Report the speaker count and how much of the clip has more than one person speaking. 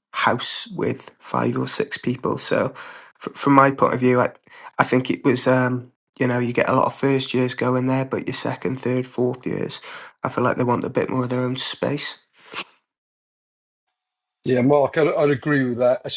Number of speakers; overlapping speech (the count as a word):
two, no overlap